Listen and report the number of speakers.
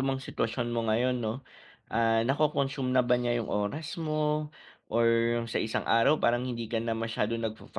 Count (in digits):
1